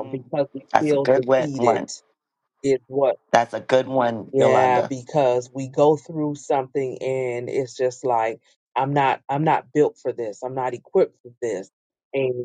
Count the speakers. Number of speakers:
2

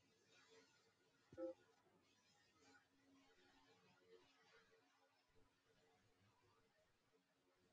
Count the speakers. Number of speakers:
0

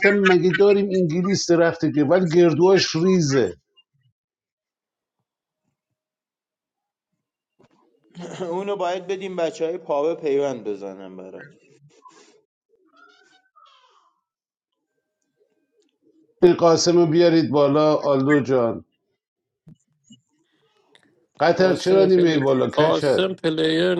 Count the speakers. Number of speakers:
3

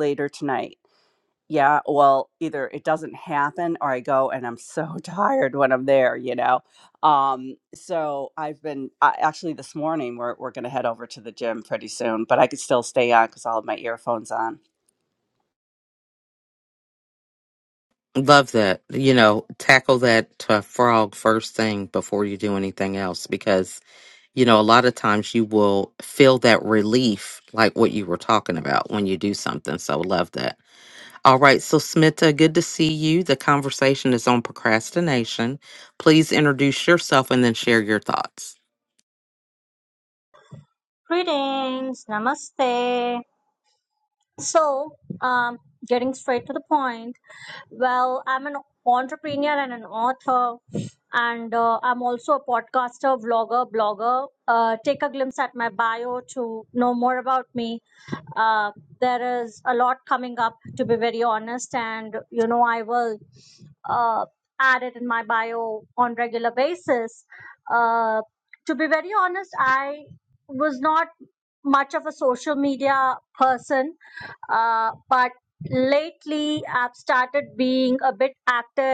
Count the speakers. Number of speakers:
3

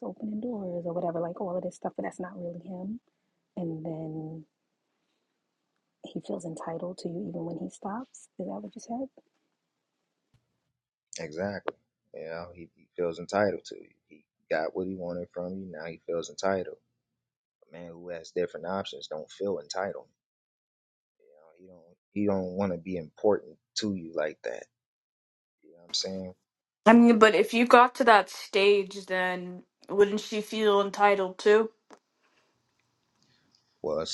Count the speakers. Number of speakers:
3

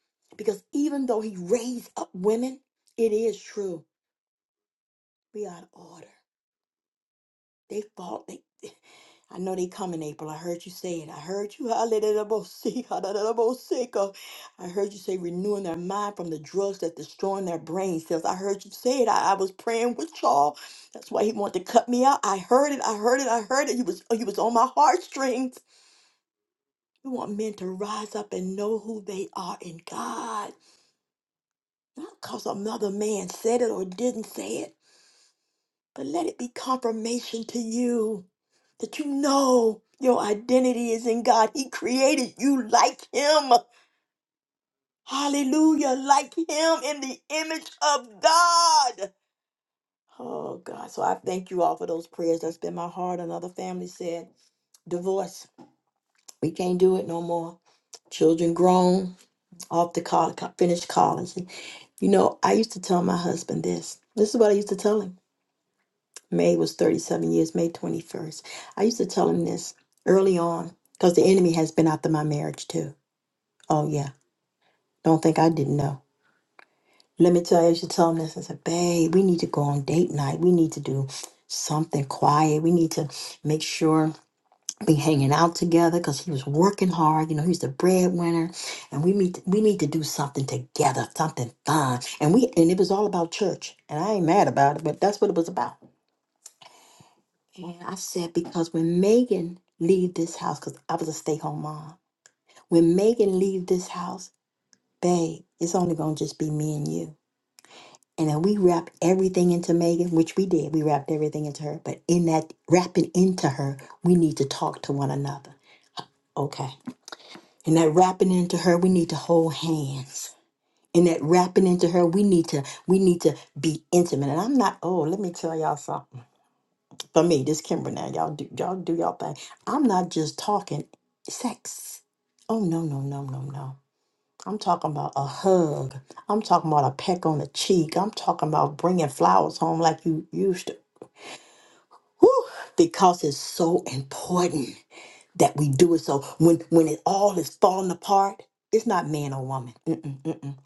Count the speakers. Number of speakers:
1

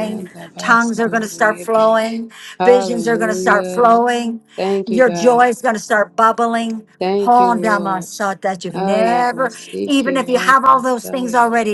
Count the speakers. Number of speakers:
2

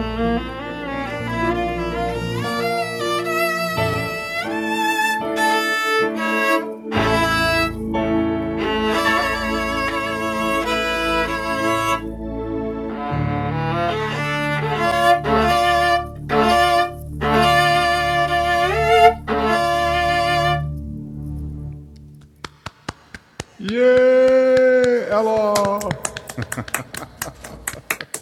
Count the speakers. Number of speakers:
2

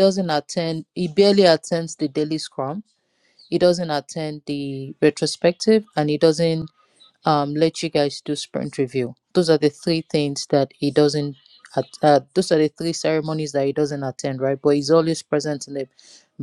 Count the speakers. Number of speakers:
1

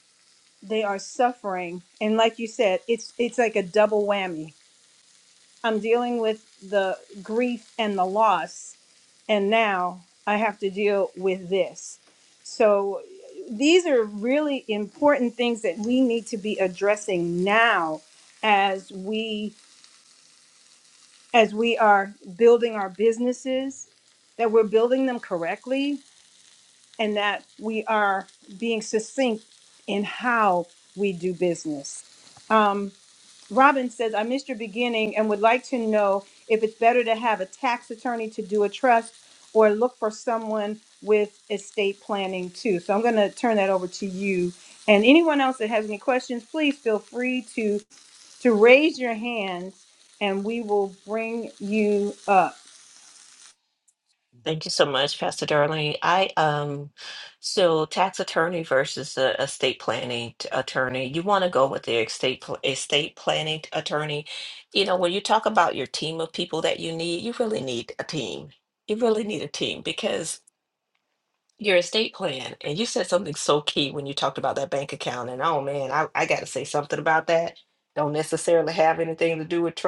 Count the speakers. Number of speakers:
2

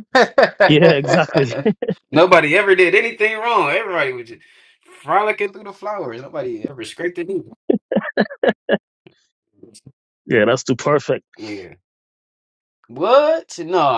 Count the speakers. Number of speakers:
2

